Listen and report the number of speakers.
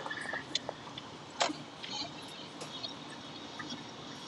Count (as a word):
zero